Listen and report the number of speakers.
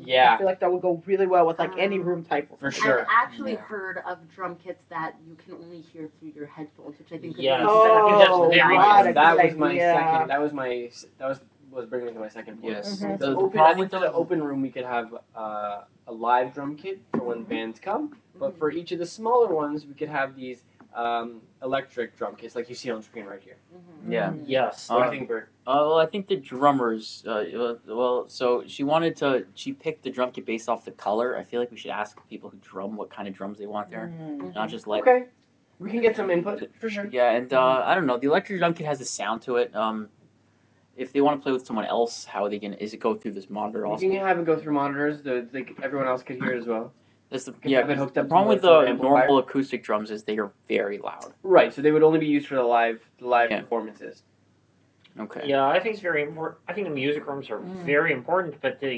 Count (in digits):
5